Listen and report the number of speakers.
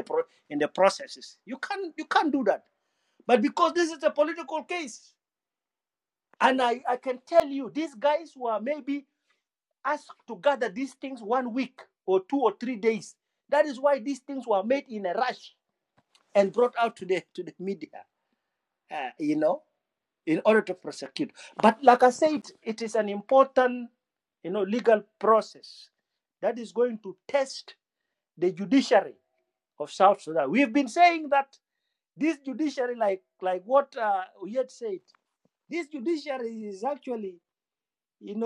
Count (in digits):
1